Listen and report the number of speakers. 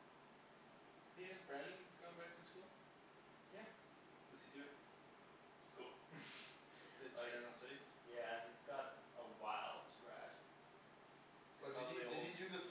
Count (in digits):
3